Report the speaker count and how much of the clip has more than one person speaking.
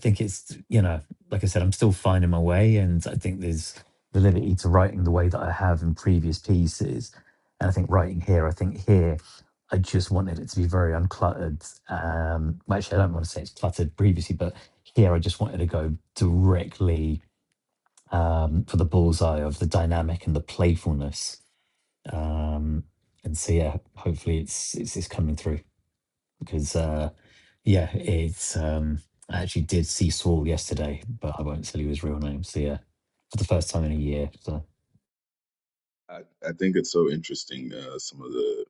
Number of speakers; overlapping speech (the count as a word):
two, no overlap